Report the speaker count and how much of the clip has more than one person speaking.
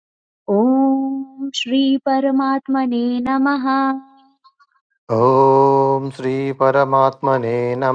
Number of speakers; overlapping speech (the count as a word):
two, no overlap